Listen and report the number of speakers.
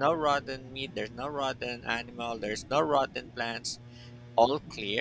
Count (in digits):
1